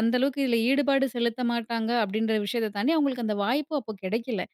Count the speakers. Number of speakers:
1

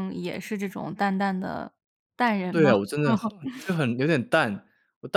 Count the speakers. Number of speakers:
2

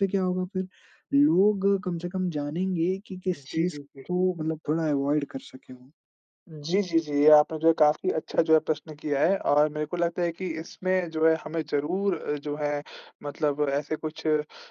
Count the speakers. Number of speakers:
2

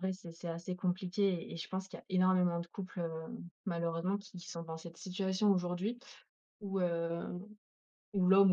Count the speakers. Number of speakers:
1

